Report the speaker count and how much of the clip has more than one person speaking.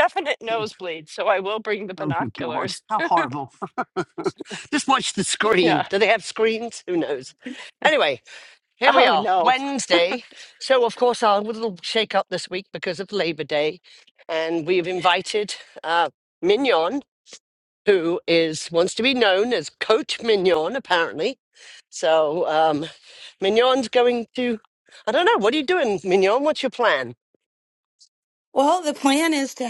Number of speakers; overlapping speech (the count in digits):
3, about 6%